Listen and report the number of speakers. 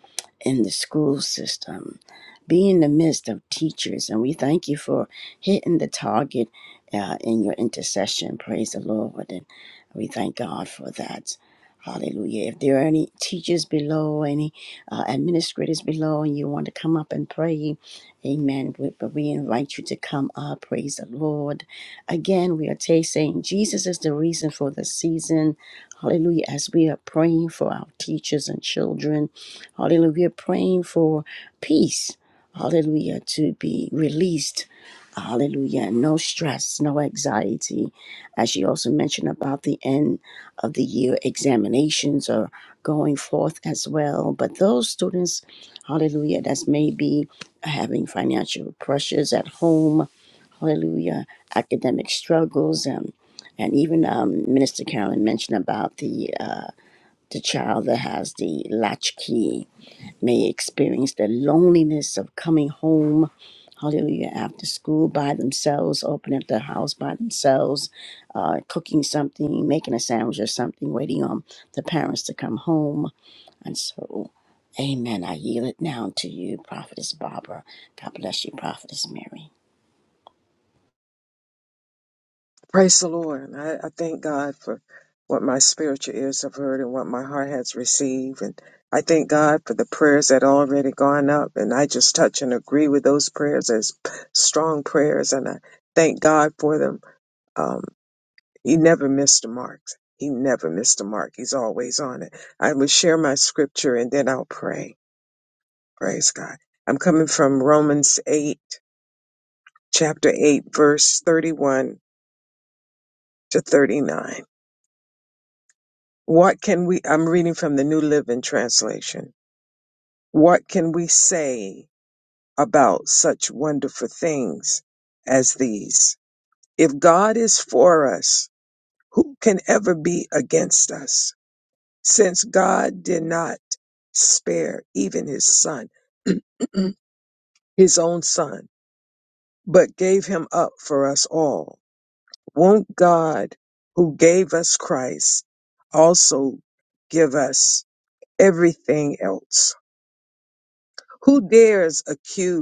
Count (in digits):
2